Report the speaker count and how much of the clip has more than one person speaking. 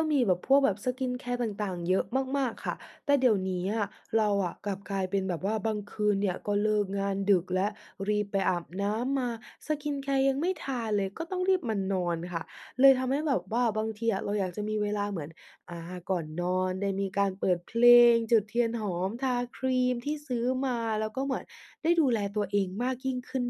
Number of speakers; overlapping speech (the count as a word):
one, no overlap